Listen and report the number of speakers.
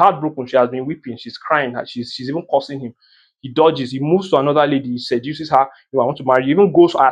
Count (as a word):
one